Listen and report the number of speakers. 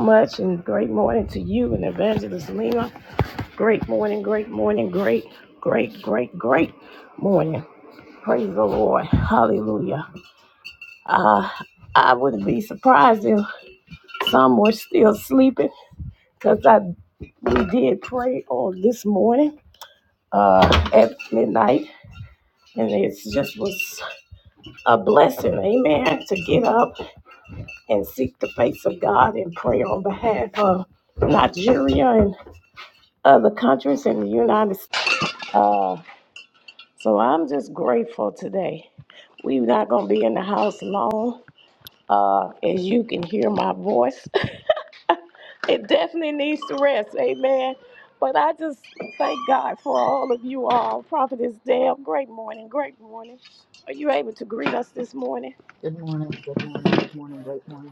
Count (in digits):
2